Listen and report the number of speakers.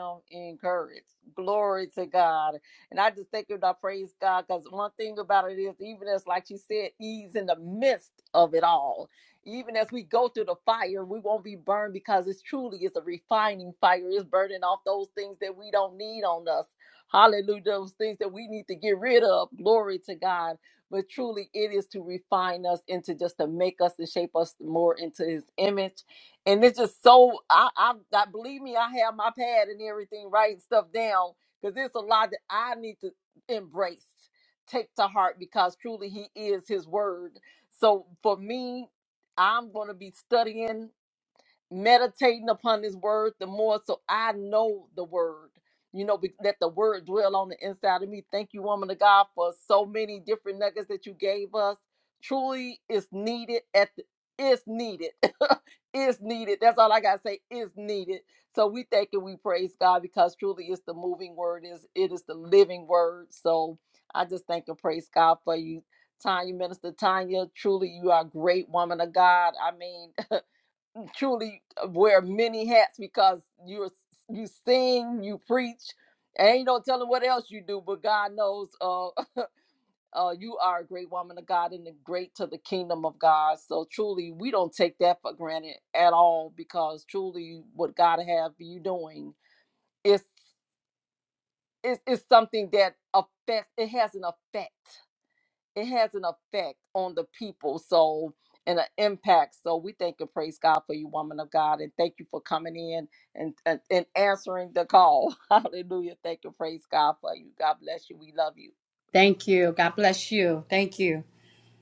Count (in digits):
2